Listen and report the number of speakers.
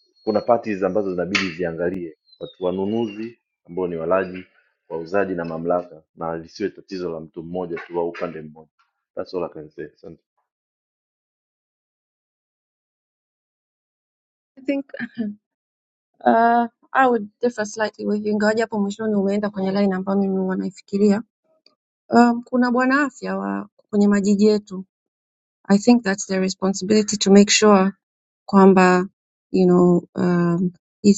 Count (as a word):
two